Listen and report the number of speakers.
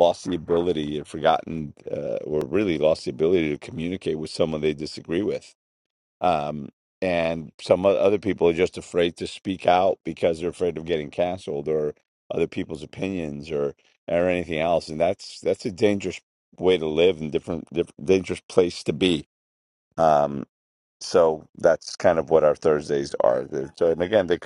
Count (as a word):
one